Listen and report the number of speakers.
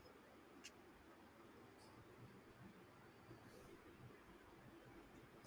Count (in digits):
0